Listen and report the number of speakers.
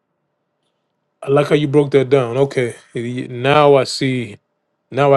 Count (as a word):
one